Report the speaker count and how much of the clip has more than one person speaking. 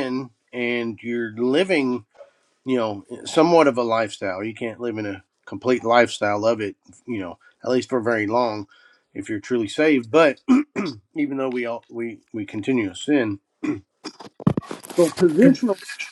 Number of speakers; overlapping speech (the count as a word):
one, no overlap